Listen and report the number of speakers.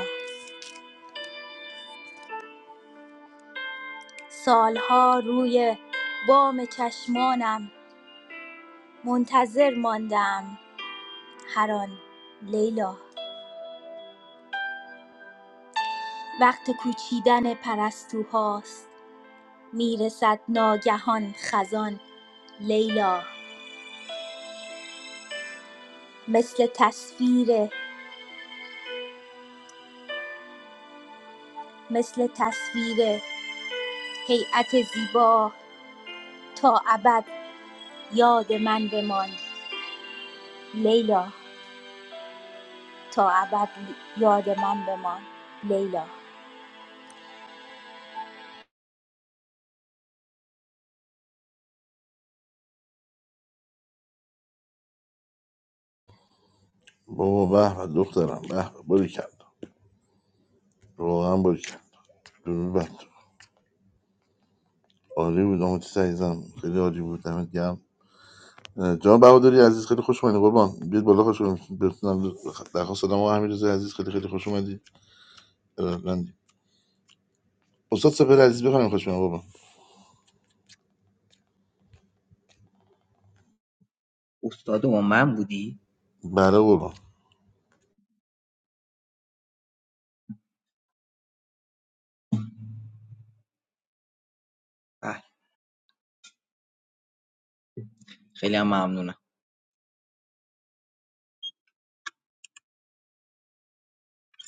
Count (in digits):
3